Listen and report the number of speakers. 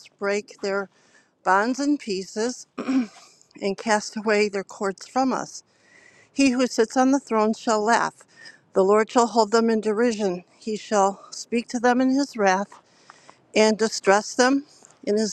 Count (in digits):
1